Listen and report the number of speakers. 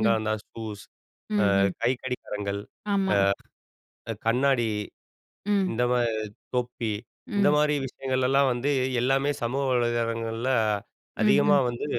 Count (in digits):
2